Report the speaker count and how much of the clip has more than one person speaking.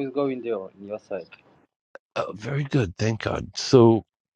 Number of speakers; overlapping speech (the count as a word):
two, no overlap